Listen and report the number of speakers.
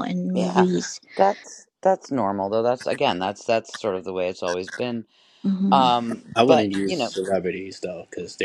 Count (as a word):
three